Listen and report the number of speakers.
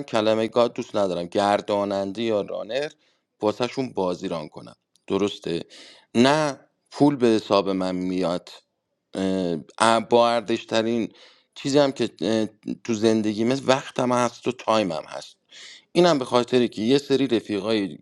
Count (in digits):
1